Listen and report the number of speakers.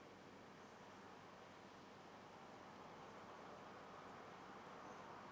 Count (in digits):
0